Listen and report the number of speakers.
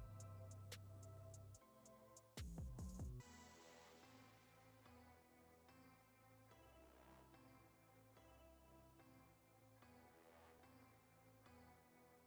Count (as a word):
zero